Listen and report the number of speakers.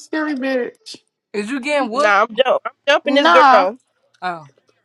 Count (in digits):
3